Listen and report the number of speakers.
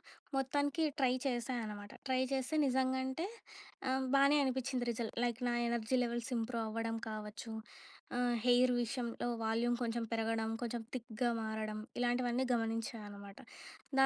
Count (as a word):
one